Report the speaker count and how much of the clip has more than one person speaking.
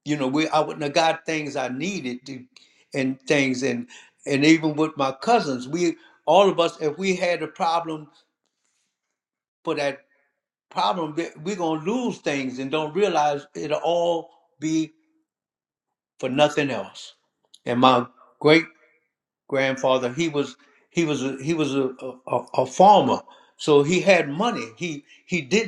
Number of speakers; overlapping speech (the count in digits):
1, no overlap